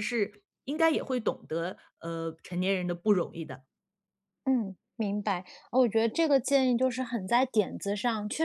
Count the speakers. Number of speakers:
2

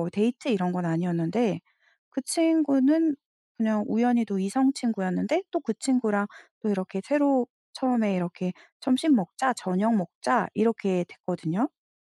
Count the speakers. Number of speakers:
1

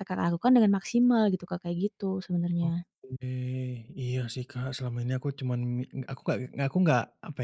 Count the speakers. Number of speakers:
2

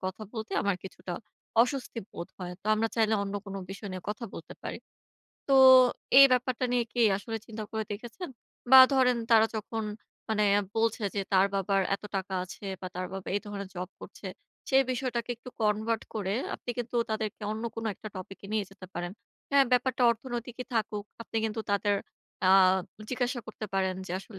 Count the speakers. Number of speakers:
1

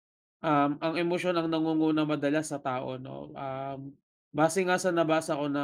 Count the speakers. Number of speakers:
1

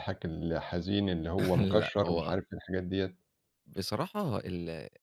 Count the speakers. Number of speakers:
2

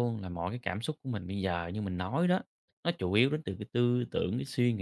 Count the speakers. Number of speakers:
1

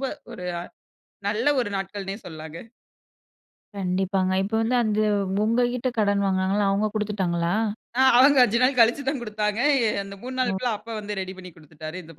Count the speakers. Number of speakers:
2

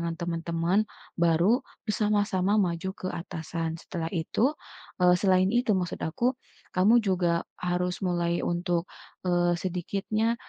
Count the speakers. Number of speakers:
1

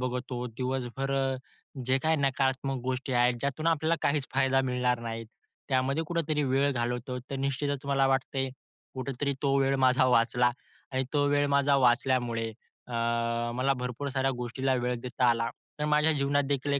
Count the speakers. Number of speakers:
1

